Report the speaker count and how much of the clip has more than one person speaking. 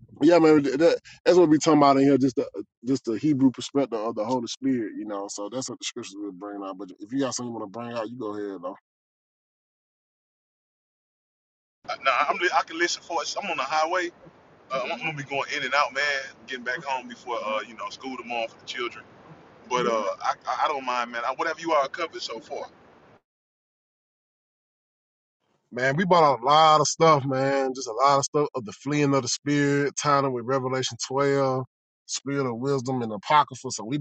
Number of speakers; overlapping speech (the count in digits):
2, no overlap